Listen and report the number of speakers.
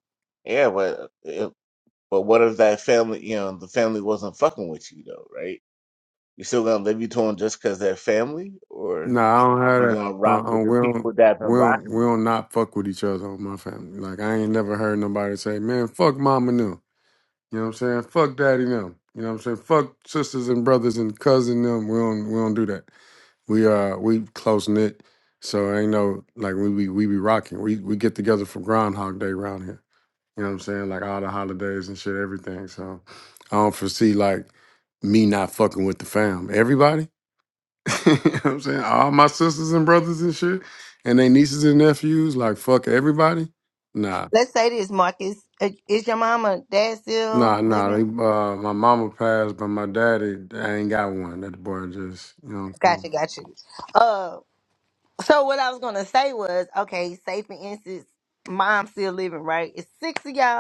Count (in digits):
3